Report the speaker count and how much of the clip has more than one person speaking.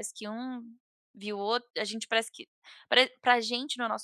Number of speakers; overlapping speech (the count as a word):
one, no overlap